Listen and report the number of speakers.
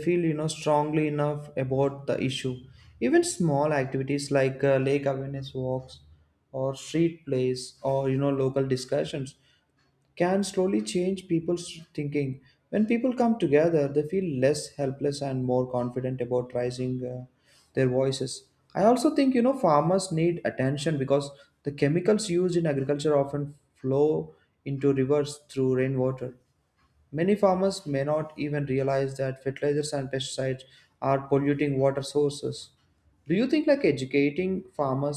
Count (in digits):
1